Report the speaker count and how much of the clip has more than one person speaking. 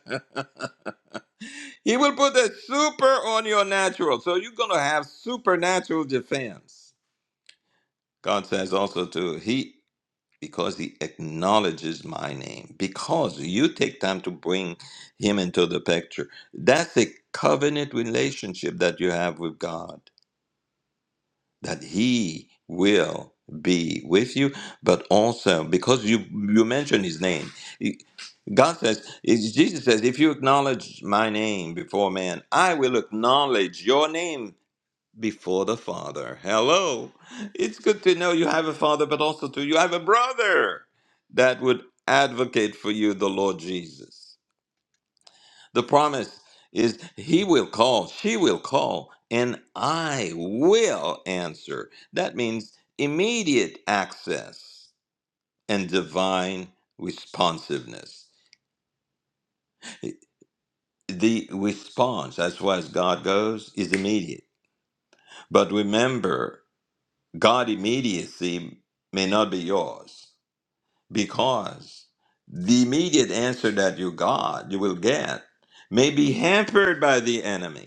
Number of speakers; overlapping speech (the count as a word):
one, no overlap